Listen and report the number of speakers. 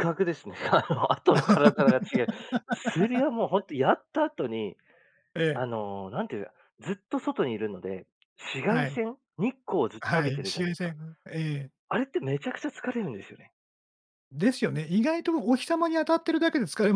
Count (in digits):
2